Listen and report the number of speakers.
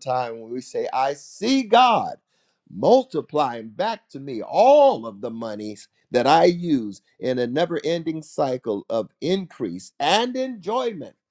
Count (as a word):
one